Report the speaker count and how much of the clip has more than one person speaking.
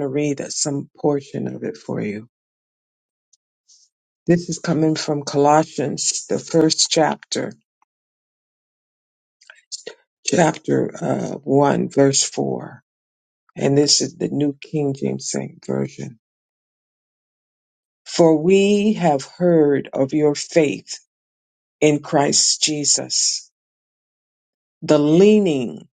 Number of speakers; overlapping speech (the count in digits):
1, no overlap